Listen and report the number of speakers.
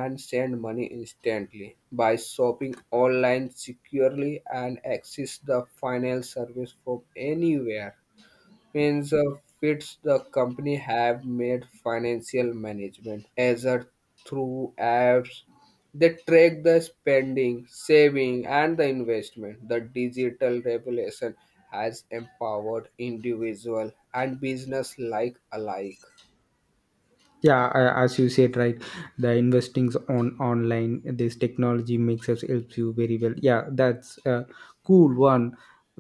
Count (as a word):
two